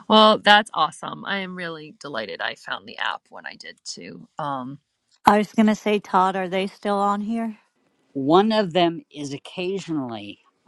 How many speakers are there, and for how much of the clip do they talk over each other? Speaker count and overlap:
three, no overlap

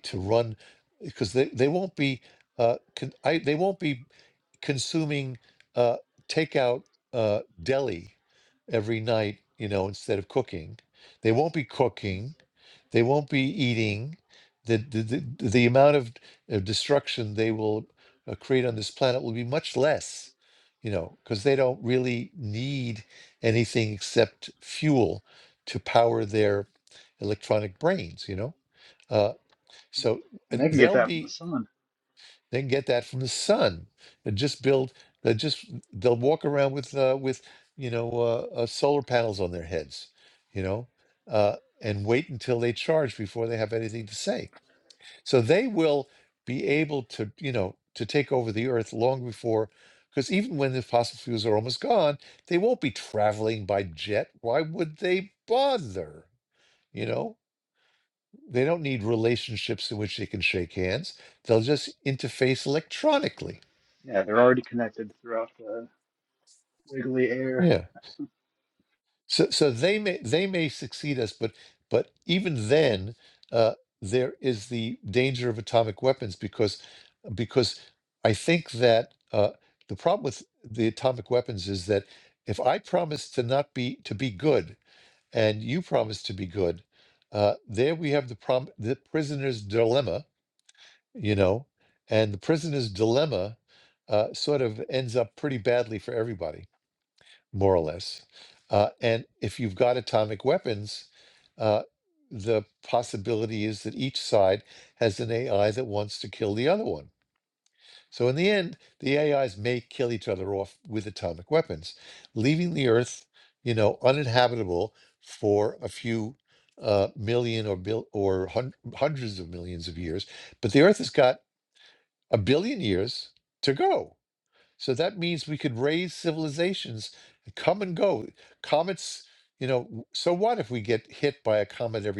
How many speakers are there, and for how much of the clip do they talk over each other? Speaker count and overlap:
two, about 1%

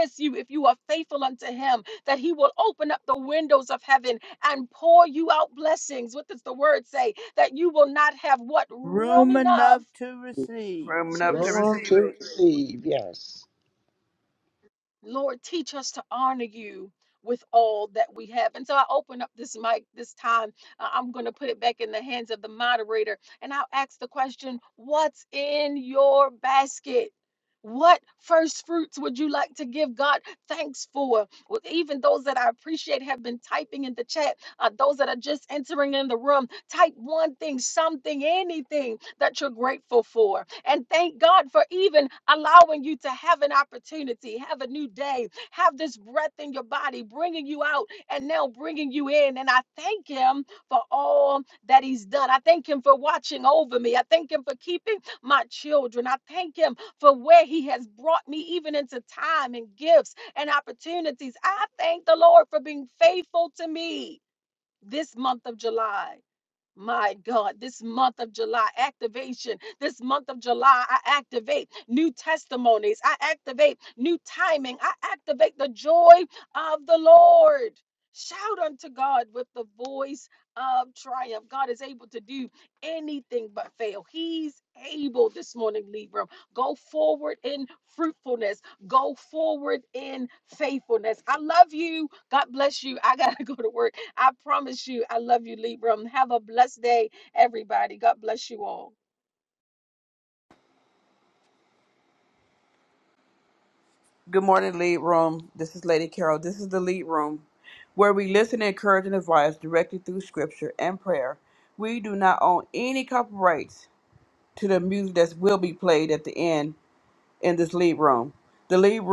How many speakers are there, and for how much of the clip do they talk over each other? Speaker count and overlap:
four, about 2%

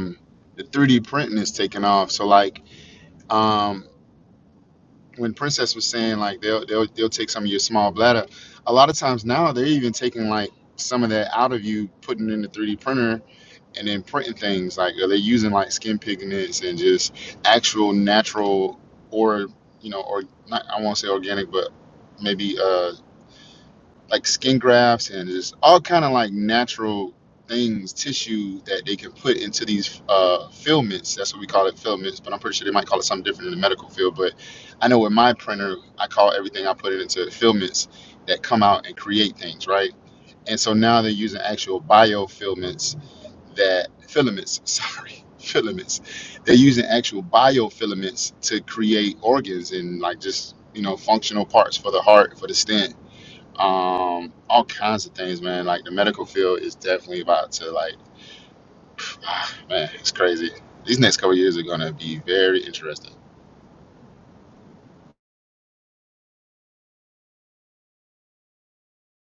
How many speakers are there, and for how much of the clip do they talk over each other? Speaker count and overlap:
one, no overlap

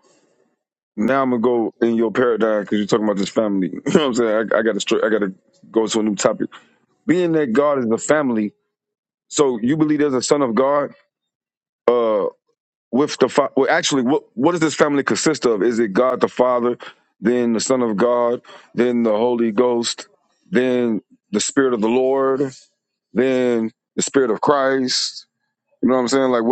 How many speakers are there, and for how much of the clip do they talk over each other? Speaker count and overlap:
one, no overlap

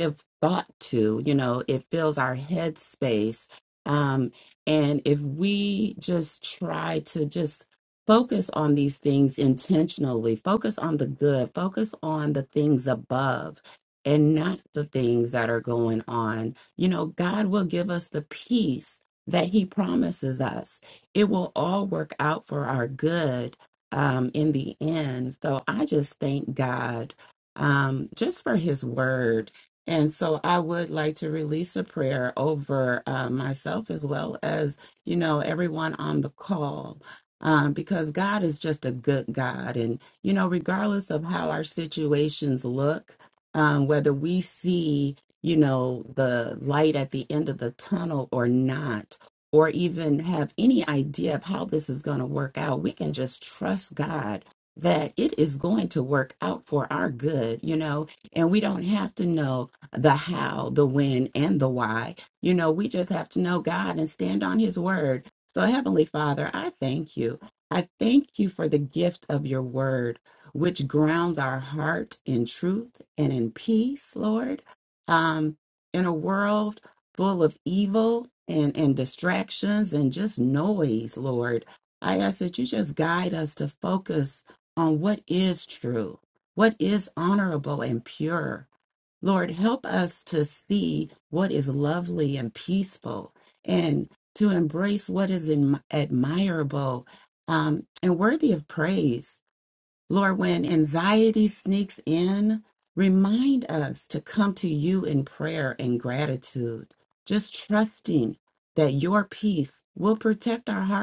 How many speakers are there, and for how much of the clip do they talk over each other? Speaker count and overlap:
one, no overlap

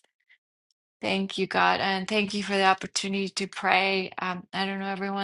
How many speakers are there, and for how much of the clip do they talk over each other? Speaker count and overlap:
one, no overlap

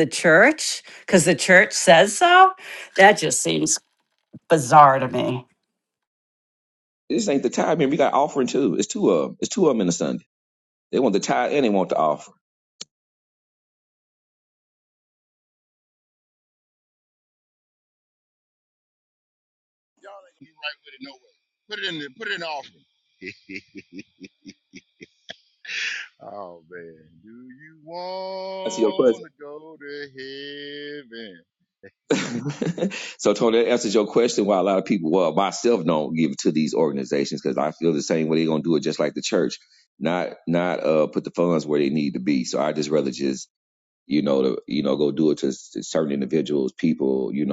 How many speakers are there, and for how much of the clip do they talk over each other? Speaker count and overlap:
three, about 1%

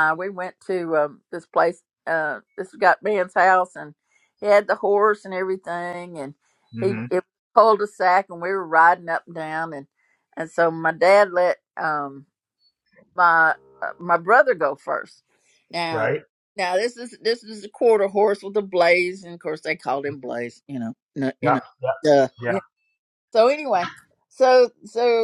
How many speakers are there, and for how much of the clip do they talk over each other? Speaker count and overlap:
two, about 3%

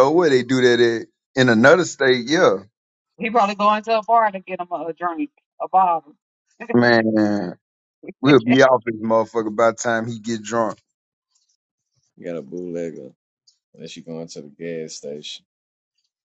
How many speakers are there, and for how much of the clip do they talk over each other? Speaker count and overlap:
three, no overlap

